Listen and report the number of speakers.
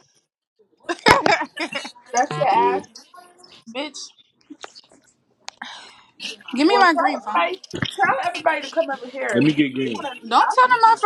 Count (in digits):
3